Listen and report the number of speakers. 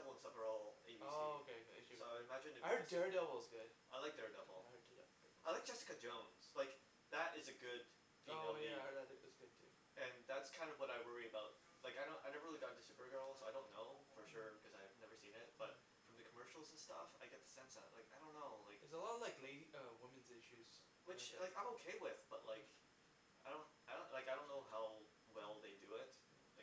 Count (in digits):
2